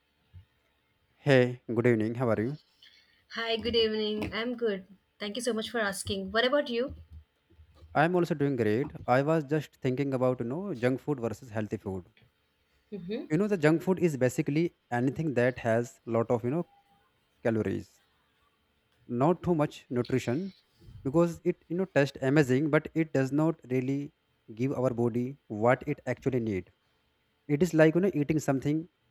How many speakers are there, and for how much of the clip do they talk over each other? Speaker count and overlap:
2, no overlap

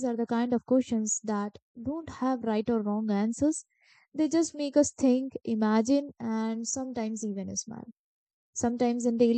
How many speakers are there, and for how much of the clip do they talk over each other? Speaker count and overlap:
1, no overlap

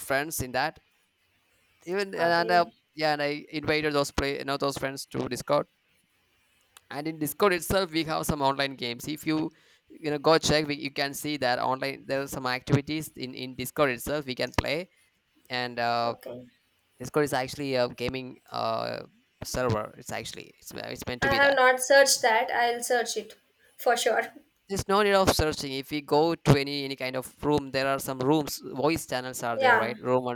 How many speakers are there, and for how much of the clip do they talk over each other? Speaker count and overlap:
2, about 4%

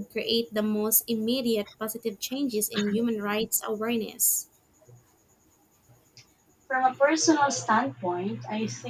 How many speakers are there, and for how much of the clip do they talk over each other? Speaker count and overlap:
2, no overlap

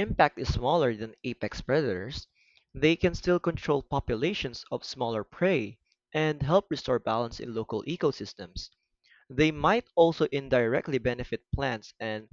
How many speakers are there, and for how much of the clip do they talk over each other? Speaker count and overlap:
1, no overlap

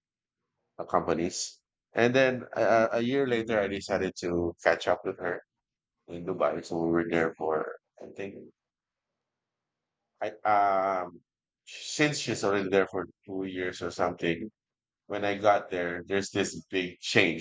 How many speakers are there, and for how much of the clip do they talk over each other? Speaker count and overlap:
1, no overlap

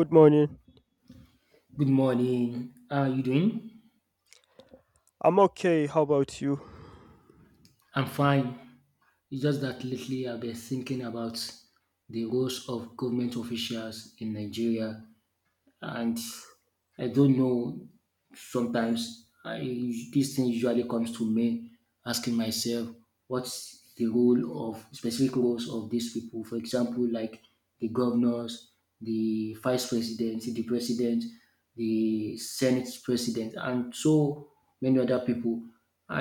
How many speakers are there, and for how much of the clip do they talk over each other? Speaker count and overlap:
2, no overlap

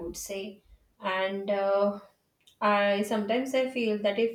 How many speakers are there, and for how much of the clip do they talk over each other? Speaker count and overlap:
1, no overlap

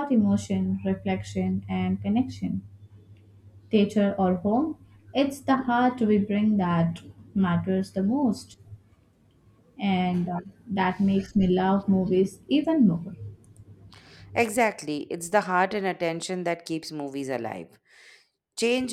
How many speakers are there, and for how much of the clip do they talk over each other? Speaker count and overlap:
2, no overlap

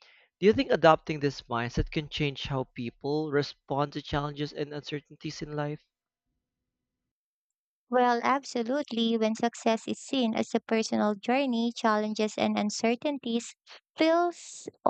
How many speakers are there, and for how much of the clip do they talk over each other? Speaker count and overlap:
2, no overlap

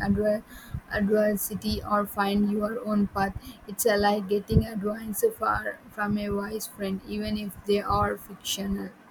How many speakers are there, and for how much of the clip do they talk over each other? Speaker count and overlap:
1, no overlap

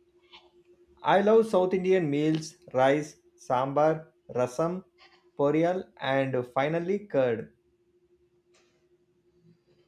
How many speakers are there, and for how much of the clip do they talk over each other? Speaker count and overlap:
1, no overlap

